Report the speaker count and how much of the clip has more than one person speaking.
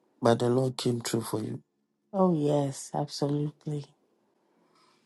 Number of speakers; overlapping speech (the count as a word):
two, no overlap